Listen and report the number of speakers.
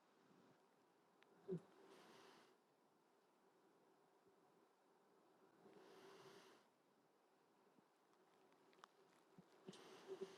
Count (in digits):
0